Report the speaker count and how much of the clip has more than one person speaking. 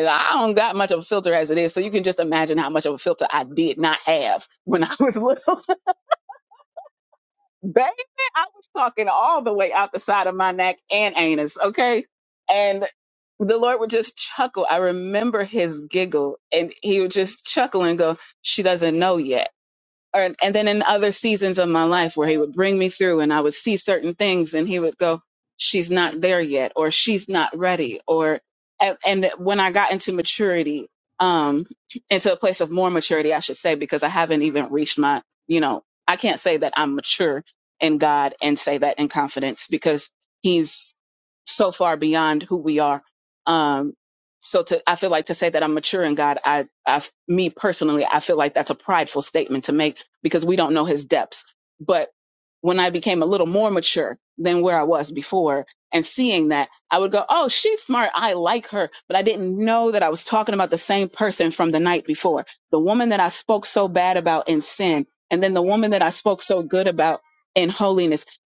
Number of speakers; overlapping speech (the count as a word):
one, no overlap